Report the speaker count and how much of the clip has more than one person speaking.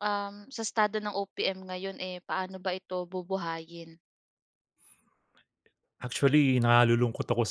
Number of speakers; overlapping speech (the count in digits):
2, no overlap